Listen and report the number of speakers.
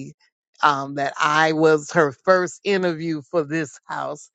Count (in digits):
1